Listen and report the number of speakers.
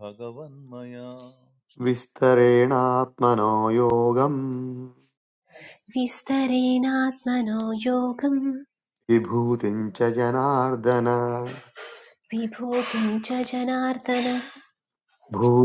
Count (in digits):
3